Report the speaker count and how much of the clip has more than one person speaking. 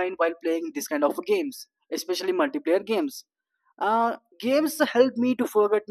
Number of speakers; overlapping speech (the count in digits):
1, no overlap